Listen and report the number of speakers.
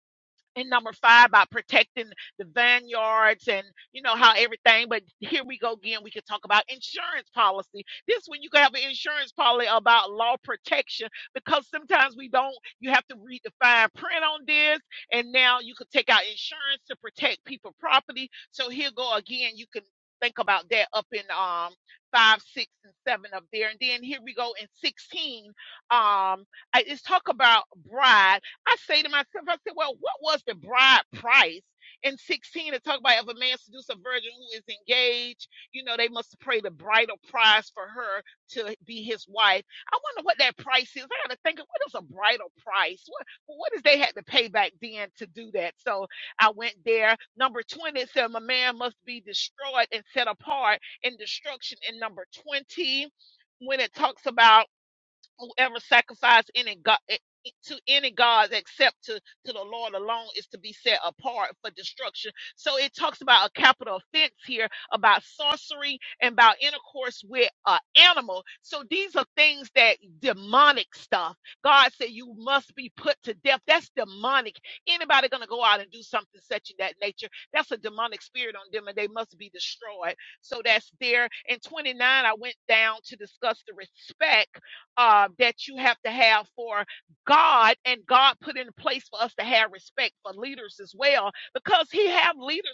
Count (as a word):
one